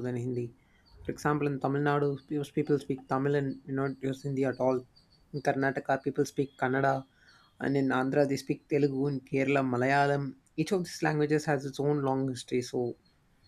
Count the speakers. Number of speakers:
1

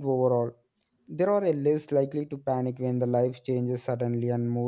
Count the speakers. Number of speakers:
1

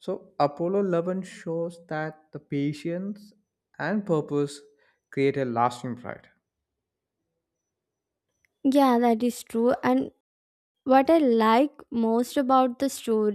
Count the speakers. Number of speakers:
2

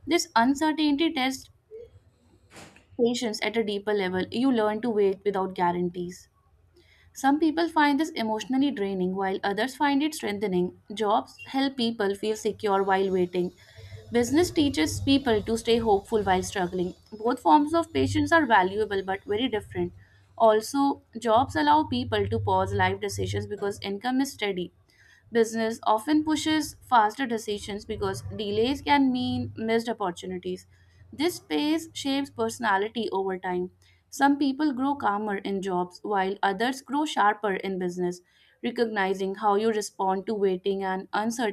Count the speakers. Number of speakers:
1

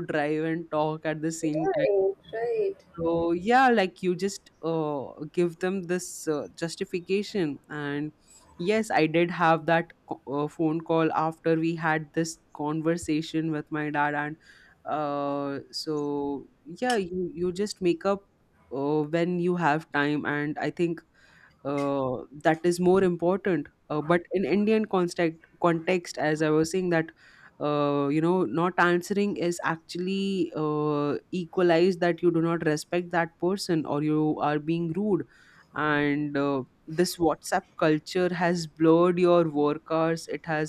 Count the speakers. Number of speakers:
2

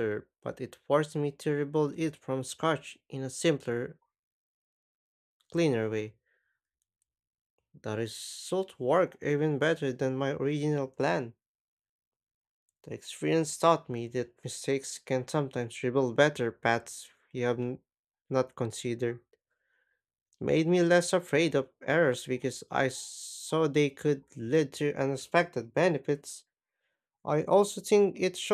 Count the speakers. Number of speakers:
1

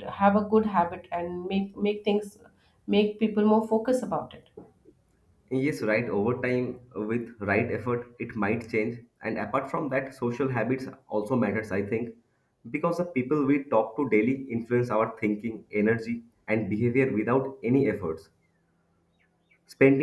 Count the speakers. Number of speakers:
2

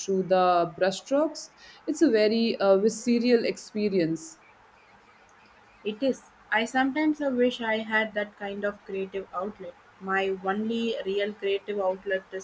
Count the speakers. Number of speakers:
2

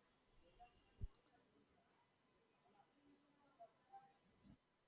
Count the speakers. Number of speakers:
0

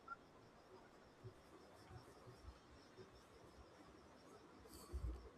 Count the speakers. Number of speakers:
0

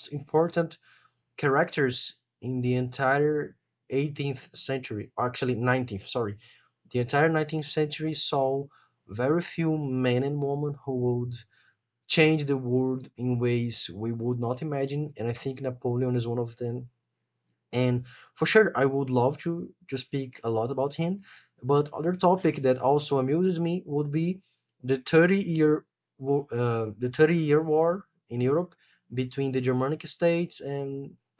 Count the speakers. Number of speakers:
1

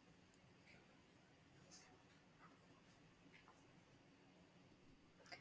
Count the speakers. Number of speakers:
0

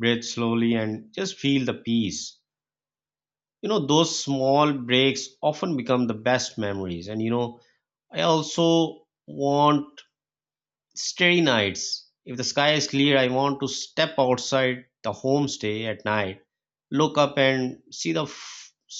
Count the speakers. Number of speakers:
1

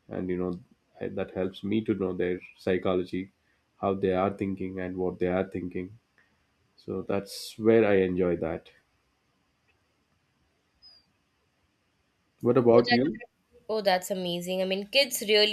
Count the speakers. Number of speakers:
2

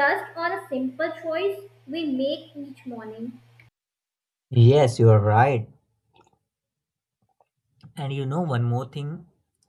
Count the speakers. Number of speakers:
2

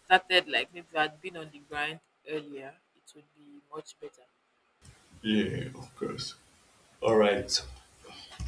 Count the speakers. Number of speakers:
2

